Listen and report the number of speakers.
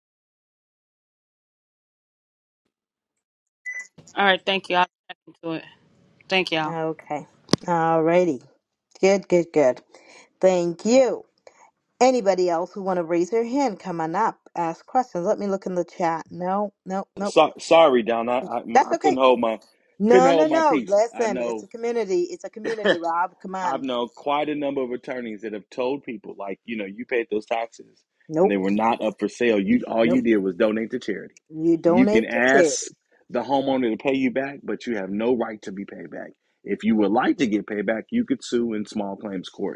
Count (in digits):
3